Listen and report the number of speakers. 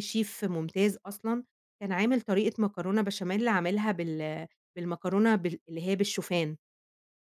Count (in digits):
1